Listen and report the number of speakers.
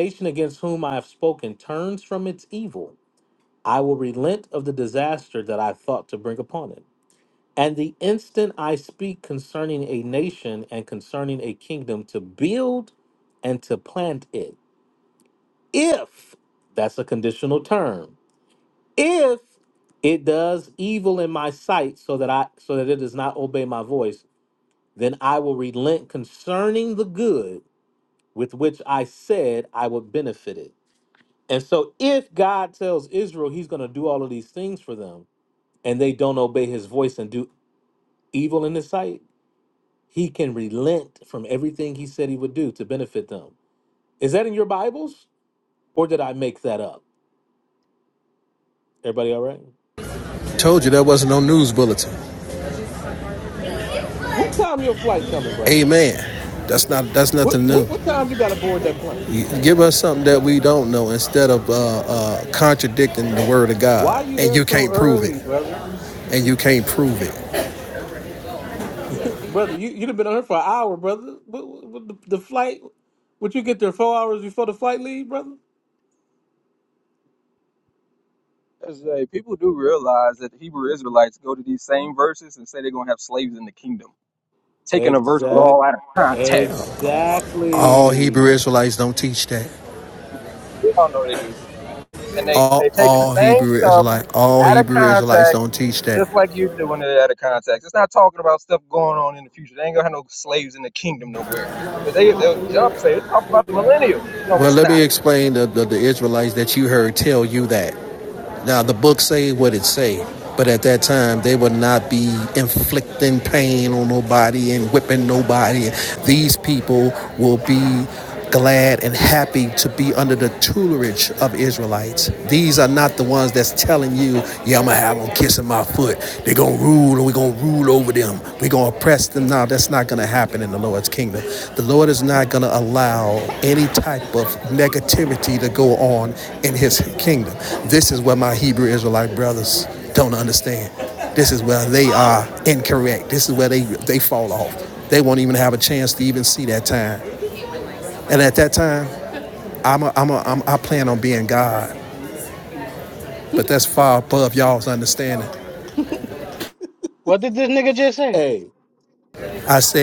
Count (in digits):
4